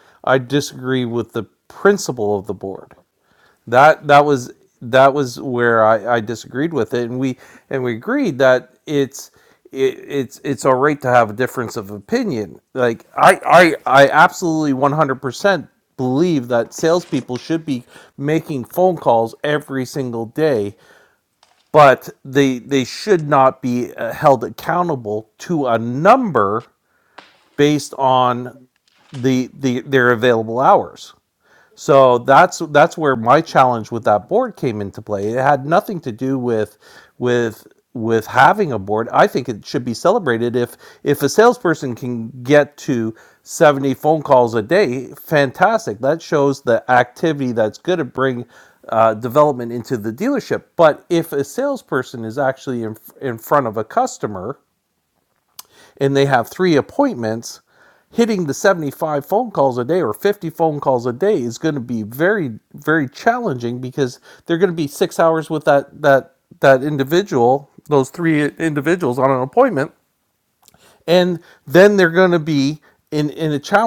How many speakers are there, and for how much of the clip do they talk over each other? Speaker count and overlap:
1, no overlap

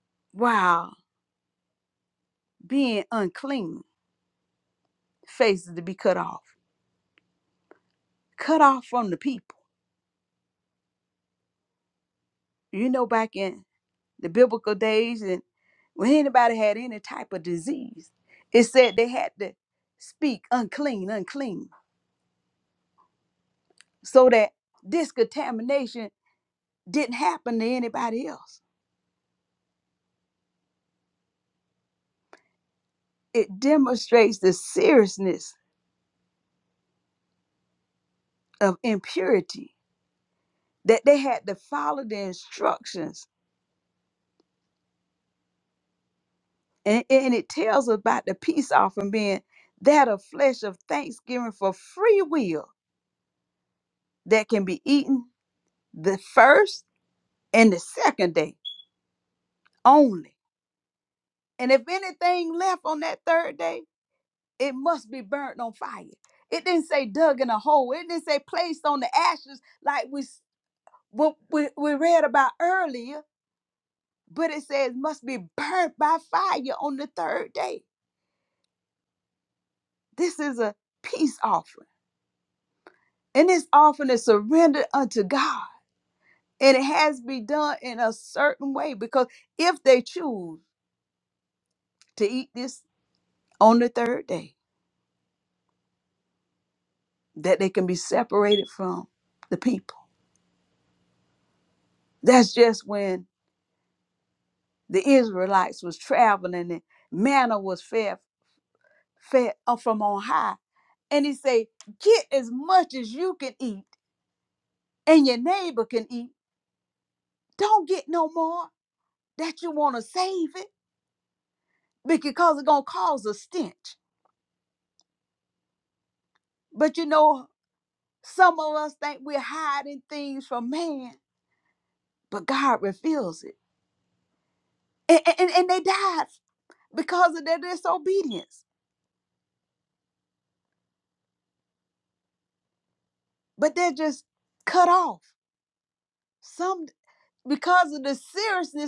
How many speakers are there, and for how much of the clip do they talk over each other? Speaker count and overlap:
1, no overlap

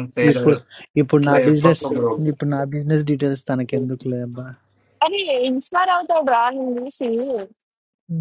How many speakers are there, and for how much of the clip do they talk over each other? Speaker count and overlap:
3, about 8%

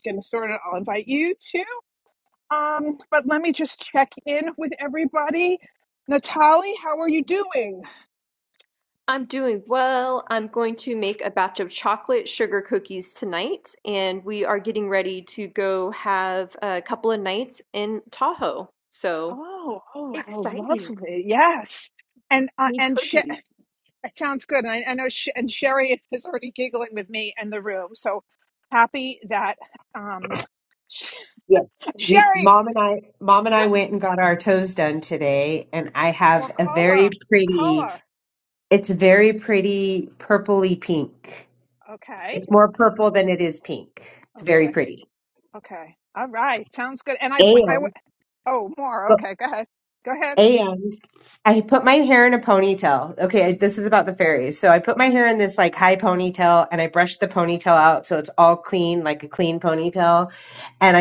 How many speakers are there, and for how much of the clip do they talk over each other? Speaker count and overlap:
3, about 6%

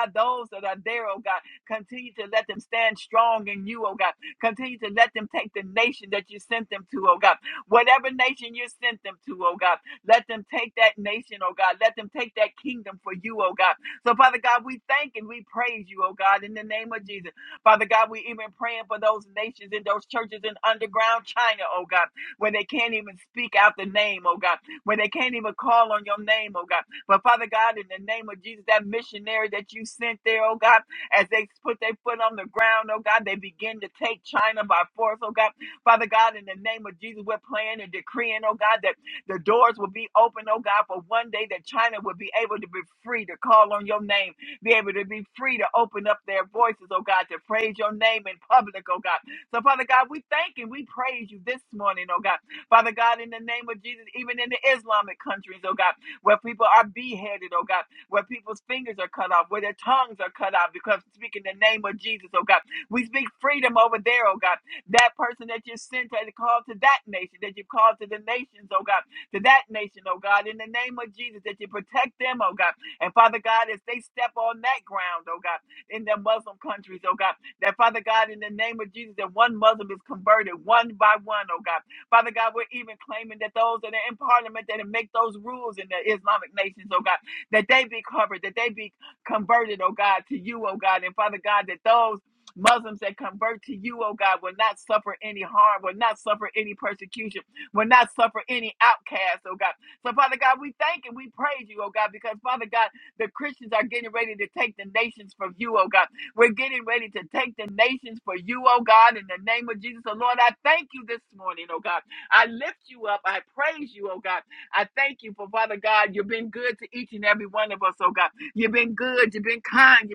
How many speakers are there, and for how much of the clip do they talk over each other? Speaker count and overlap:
1, no overlap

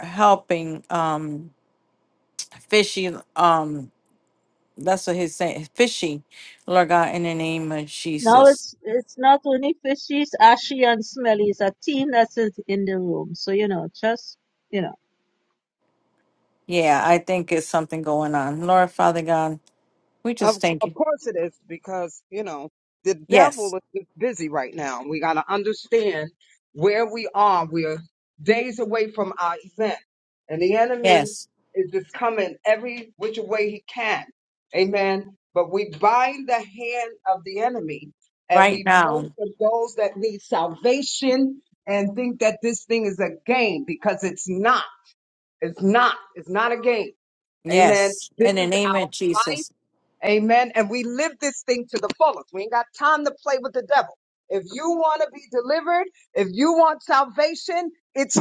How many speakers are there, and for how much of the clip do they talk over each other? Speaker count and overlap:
3, about 7%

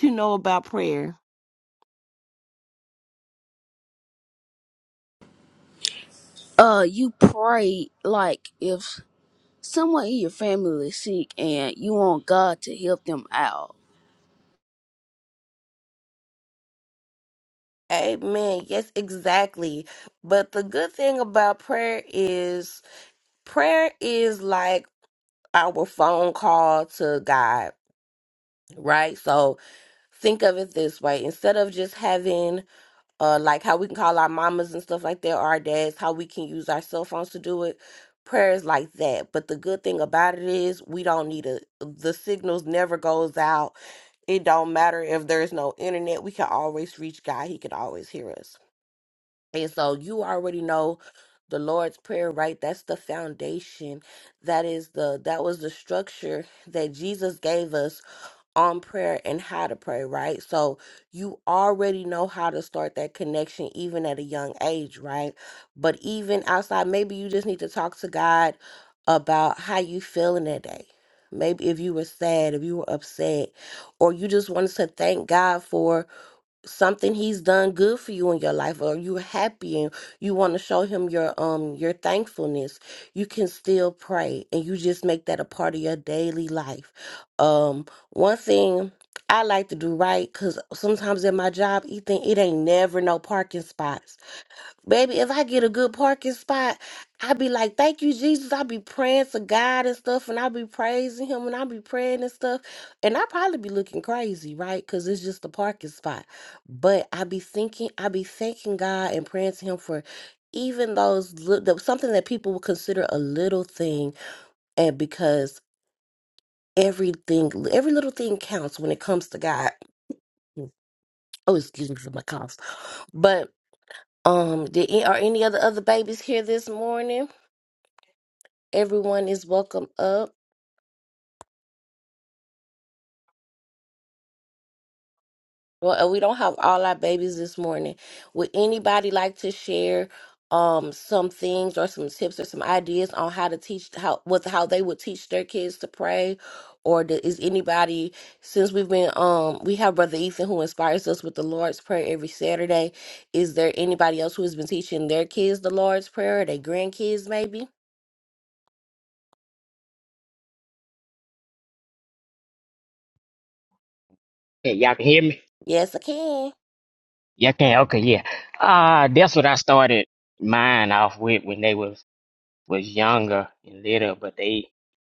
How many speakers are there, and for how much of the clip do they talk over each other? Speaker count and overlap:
3, no overlap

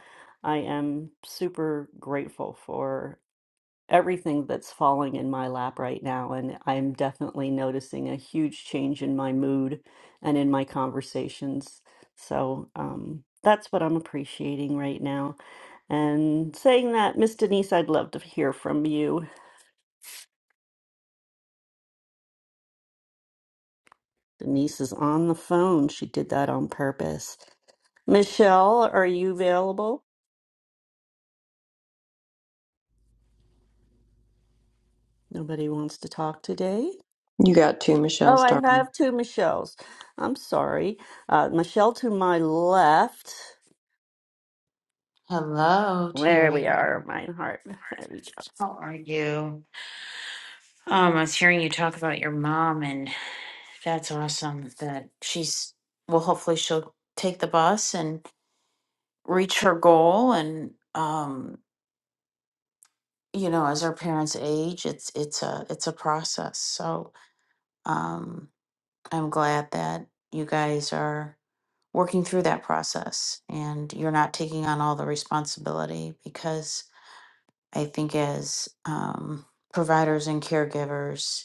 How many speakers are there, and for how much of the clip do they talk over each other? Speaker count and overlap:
3, about 1%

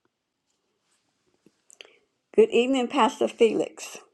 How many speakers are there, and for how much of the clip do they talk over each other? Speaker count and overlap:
1, no overlap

